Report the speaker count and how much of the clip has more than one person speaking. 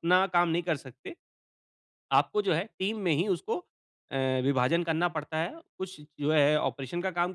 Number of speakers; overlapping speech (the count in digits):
1, no overlap